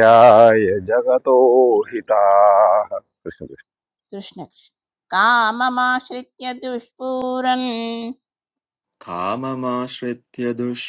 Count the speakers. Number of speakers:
3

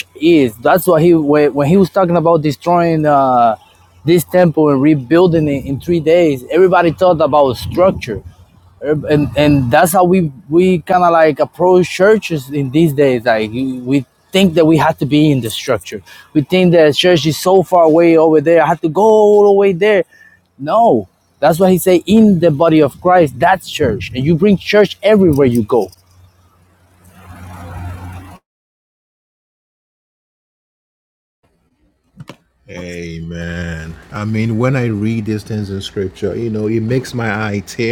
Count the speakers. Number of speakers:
2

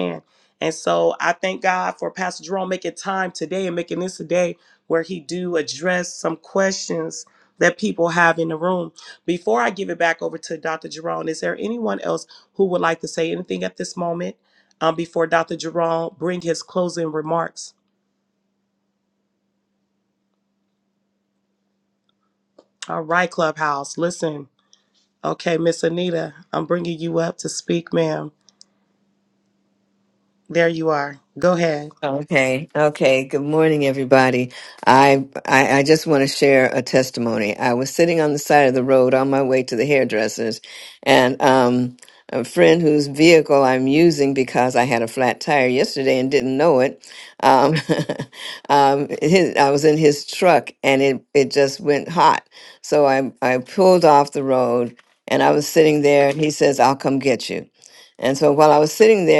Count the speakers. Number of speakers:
2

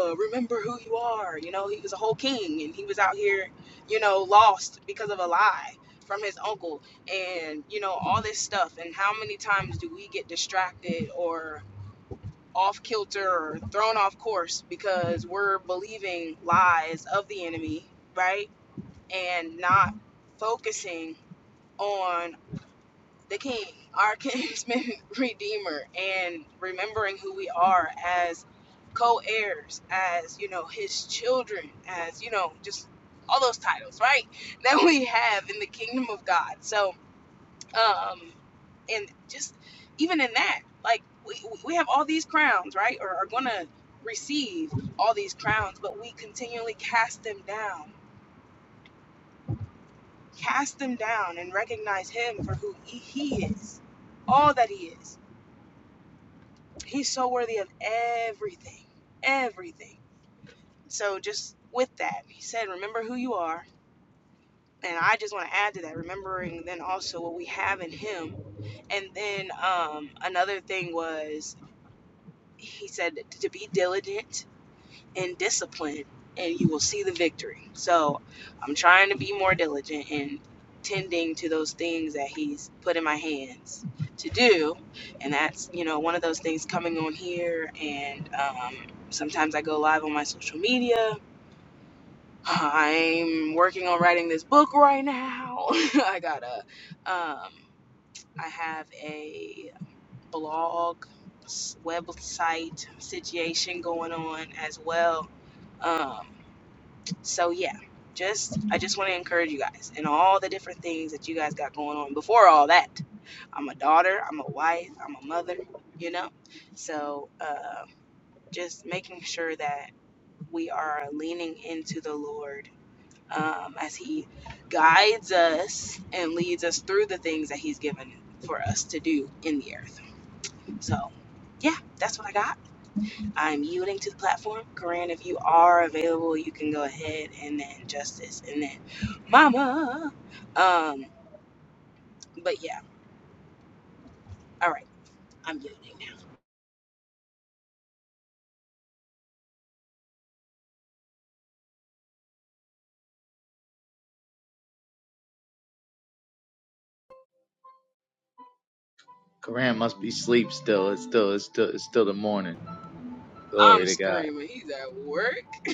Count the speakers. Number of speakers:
2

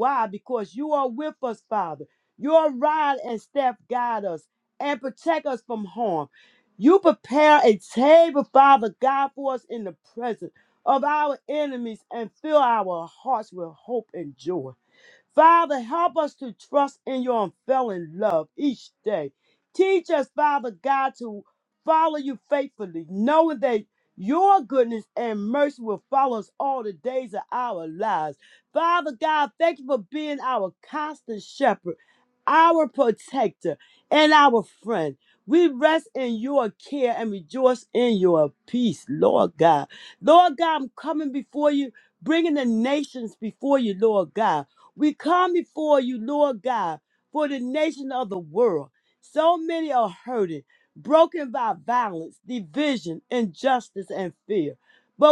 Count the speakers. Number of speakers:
1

